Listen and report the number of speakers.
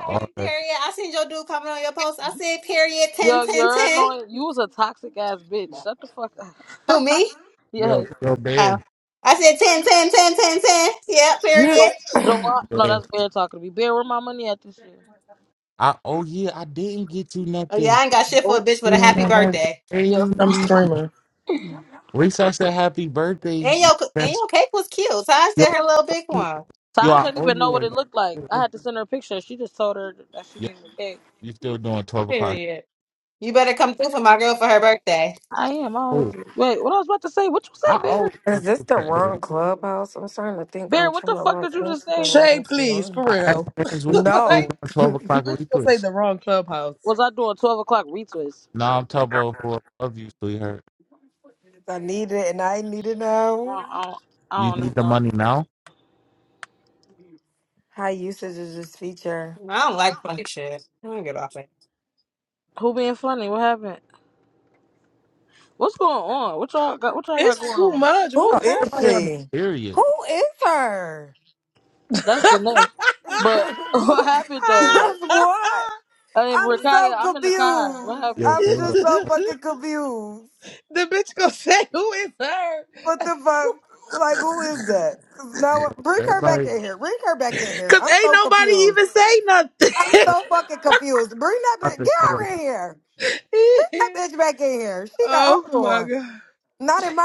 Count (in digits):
5